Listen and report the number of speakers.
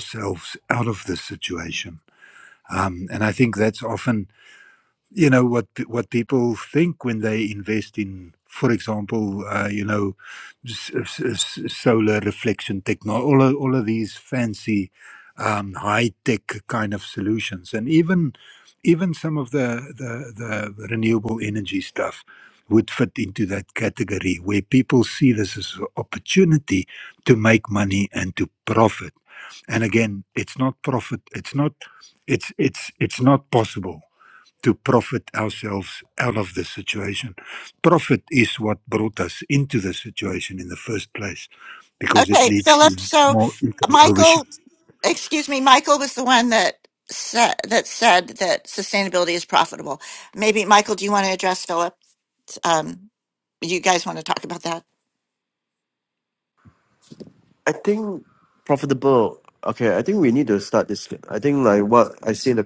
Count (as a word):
three